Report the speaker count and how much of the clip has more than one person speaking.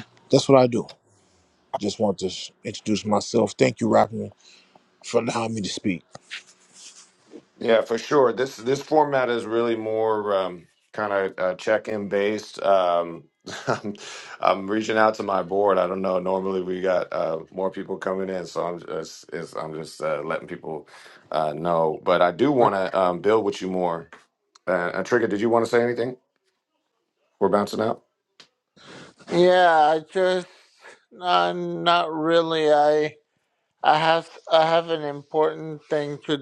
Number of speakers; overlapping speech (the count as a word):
three, no overlap